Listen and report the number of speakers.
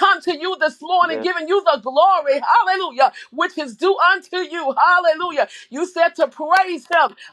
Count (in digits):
1